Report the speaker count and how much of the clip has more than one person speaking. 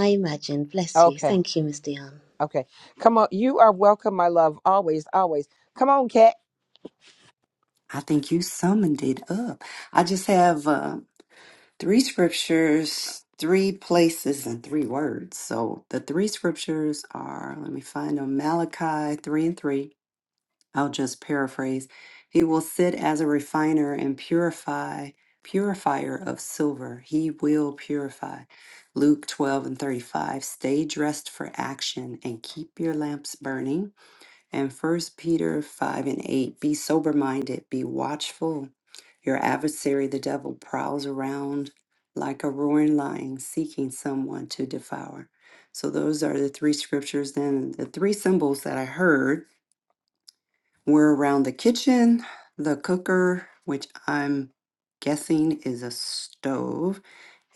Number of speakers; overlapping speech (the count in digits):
3, about 1%